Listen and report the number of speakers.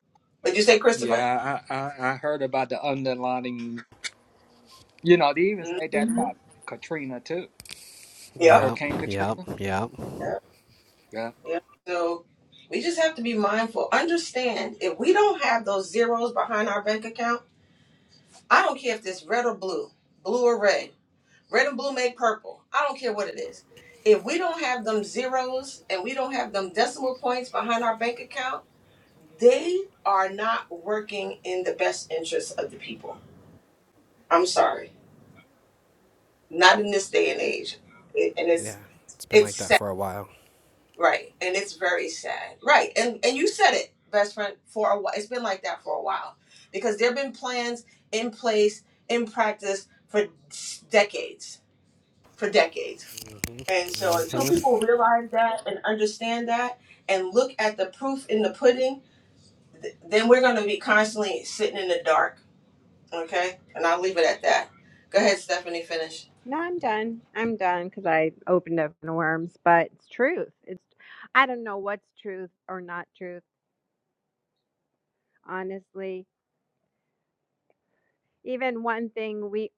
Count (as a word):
four